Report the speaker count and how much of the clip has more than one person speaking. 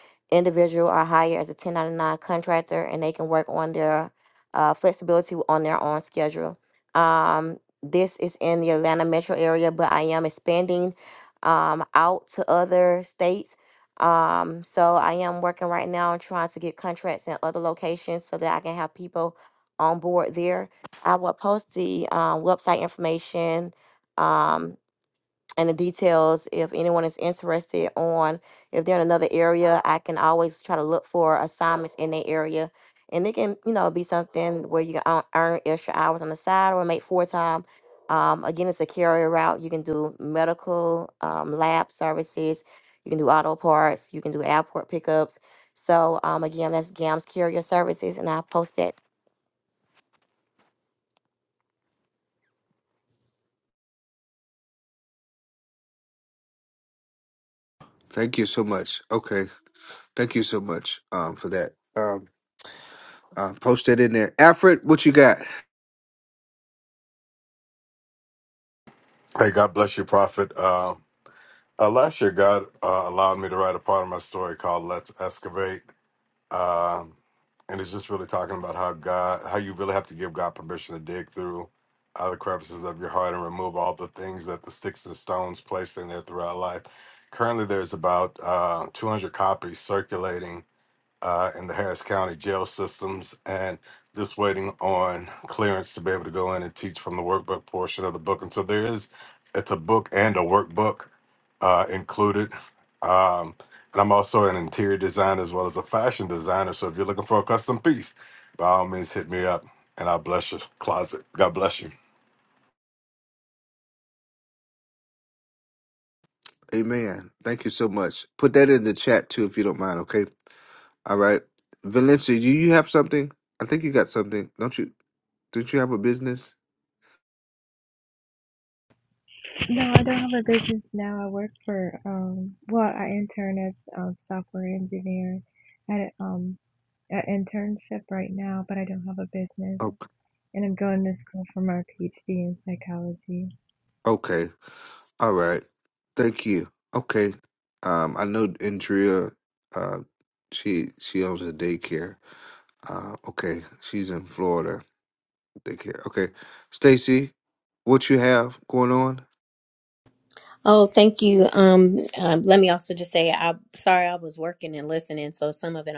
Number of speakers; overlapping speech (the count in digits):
5, no overlap